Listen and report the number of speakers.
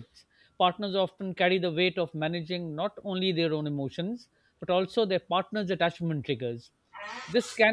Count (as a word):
one